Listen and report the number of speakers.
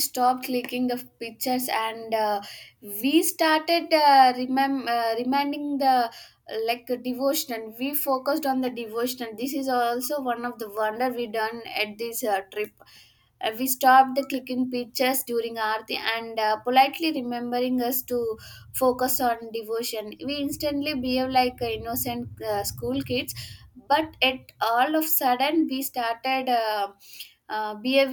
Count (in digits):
1